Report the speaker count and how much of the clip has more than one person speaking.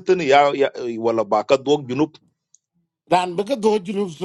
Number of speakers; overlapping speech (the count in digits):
2, no overlap